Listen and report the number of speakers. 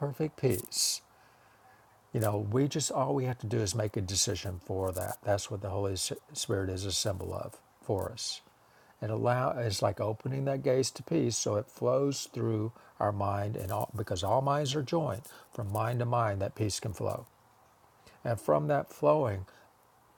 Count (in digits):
1